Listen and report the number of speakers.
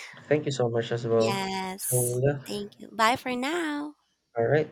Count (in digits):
2